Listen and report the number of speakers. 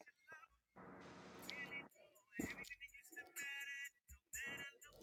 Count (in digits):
0